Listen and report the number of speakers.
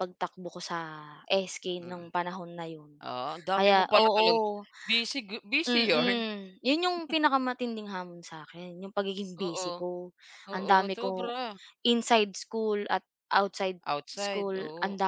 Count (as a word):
two